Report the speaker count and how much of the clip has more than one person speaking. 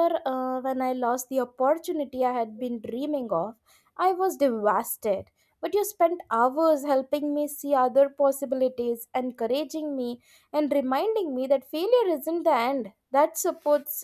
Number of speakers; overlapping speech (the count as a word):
one, no overlap